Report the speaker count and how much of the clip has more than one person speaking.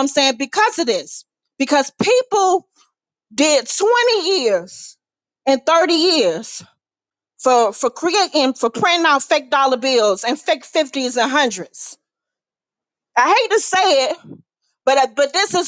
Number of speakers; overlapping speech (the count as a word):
one, no overlap